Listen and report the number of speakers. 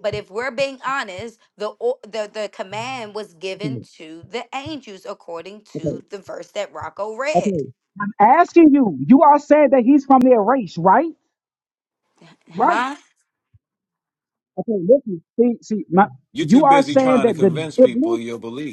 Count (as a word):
three